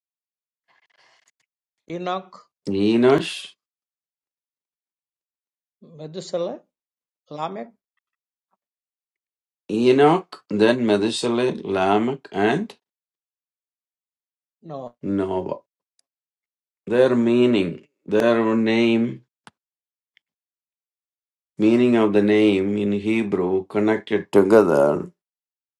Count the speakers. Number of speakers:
2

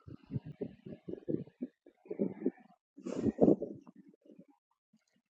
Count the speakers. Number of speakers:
0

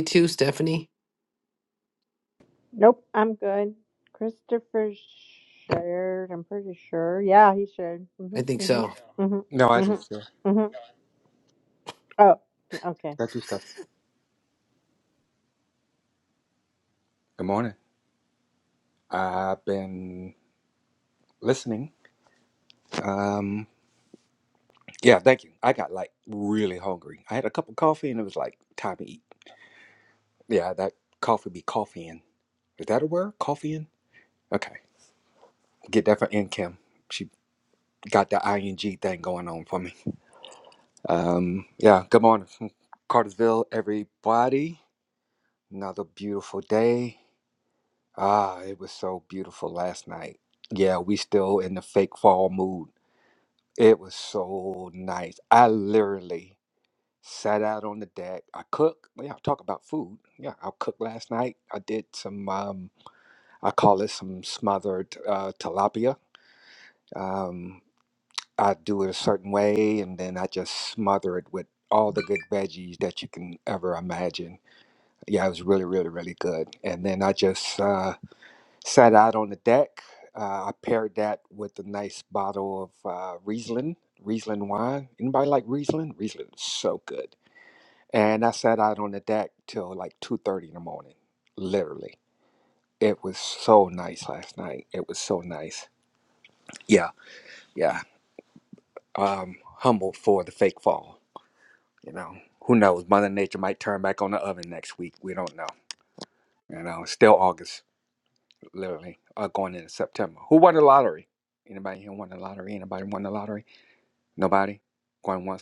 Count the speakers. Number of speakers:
3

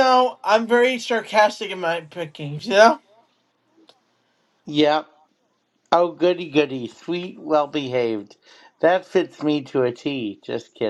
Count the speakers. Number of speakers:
2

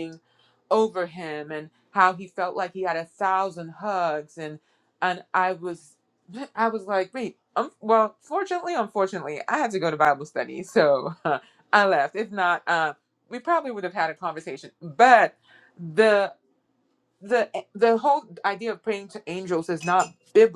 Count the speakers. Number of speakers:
1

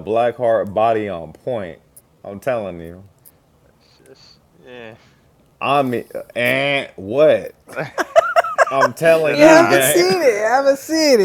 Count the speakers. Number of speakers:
3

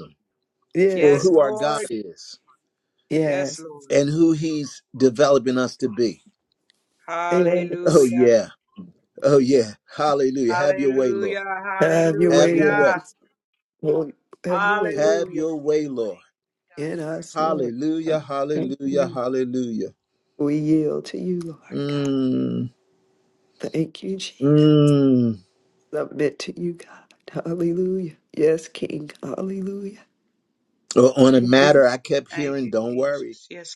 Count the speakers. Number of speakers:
3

